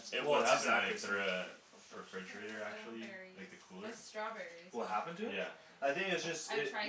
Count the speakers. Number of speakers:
three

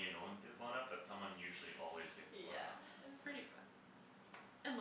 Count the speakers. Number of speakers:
two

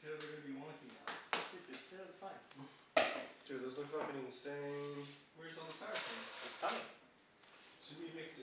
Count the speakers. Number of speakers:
three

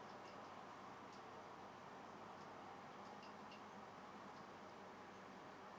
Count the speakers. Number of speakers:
zero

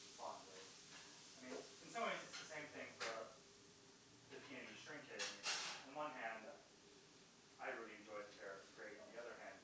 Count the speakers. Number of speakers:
one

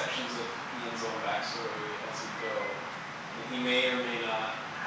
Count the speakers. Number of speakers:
one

